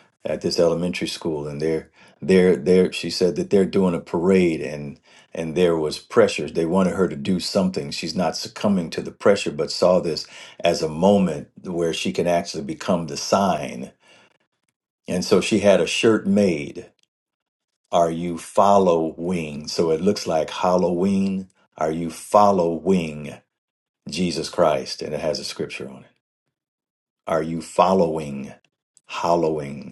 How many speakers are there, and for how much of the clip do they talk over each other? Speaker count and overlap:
one, no overlap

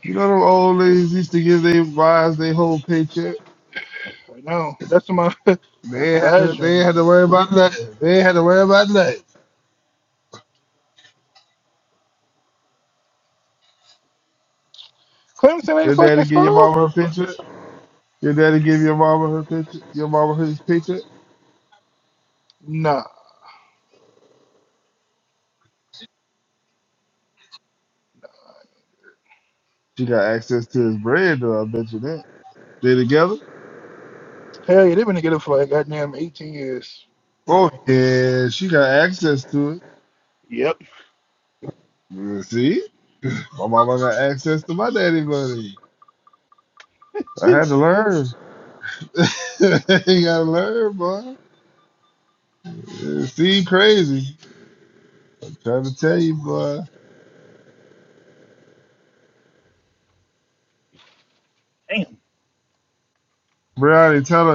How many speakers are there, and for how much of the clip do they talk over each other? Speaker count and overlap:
two, about 2%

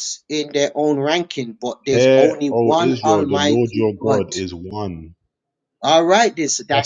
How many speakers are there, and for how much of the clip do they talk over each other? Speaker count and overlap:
two, about 36%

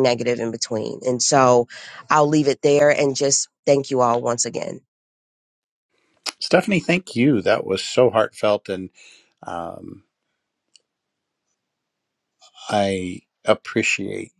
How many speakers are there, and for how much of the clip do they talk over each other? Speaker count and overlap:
two, no overlap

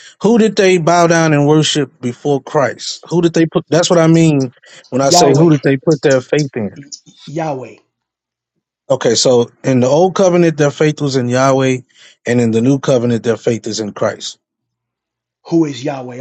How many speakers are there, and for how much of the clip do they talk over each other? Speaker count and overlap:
two, about 3%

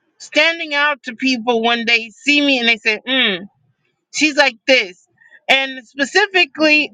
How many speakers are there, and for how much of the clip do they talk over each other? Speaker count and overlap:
one, no overlap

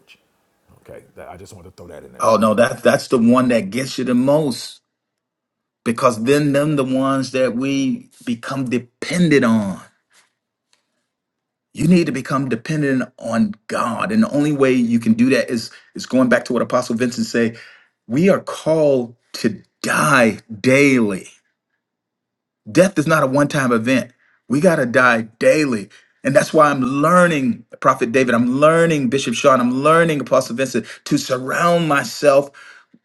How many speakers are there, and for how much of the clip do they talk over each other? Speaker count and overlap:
two, about 1%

